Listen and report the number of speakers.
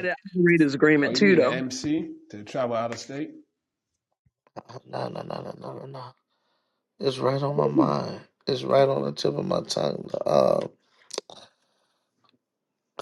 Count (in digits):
3